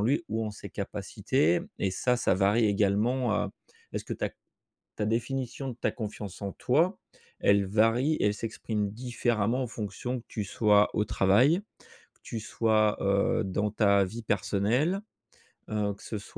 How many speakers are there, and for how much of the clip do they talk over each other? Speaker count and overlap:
one, no overlap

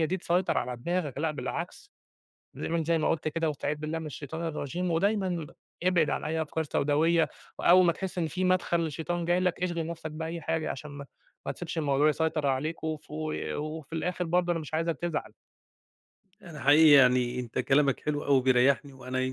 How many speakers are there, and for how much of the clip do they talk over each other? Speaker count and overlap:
two, no overlap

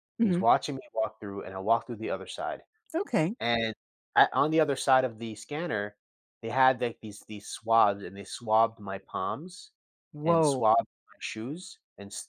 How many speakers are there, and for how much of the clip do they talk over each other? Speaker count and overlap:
two, about 5%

